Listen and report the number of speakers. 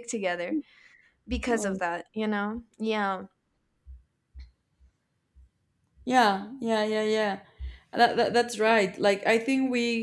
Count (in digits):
2